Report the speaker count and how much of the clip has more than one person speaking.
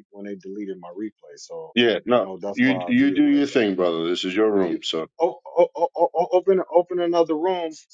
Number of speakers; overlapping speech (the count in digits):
2, about 22%